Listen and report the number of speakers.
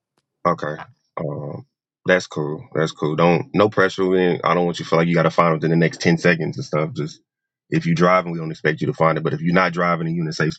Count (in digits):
1